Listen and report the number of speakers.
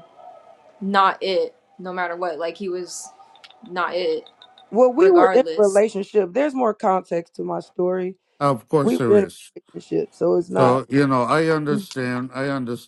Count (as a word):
three